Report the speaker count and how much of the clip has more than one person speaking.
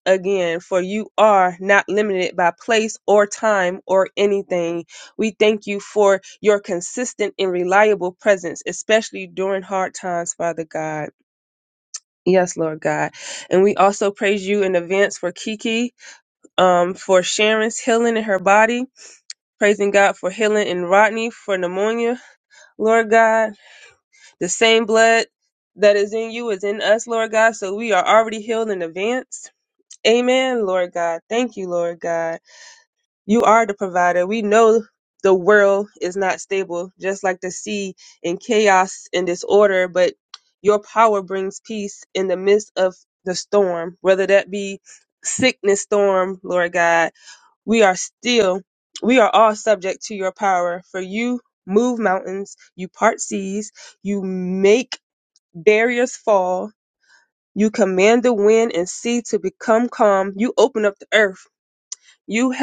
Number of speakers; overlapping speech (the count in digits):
1, no overlap